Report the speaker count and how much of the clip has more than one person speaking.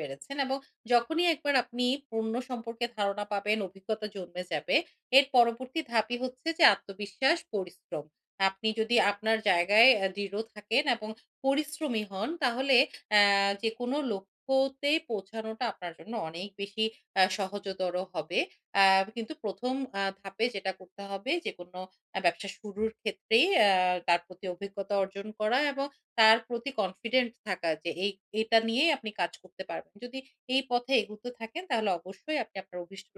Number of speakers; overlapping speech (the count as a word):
one, no overlap